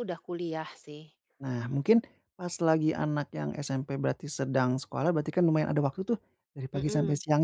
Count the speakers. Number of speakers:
2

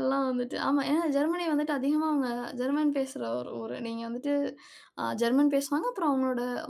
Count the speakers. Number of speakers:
1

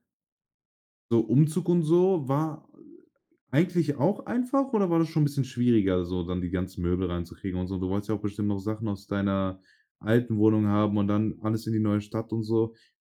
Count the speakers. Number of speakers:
1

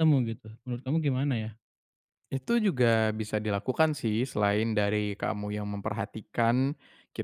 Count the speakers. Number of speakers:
2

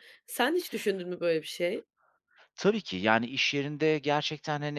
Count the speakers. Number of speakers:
2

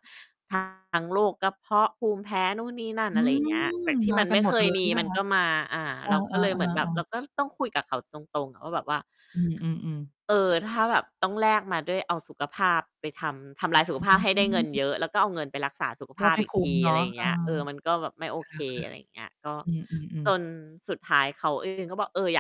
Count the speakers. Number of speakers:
2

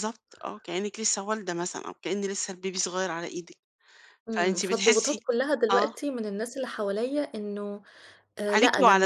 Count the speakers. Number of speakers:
2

